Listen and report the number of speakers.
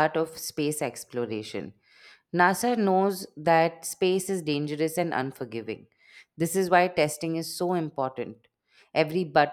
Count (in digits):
1